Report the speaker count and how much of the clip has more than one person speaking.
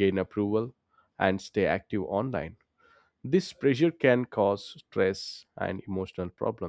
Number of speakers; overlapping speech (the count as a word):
one, no overlap